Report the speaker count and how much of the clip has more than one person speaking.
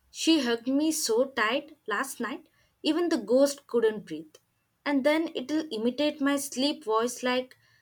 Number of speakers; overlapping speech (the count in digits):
1, no overlap